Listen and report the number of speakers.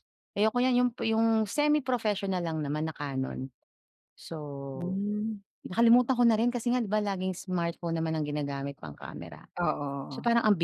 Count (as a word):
two